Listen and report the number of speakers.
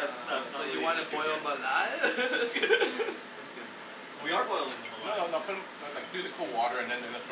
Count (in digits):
3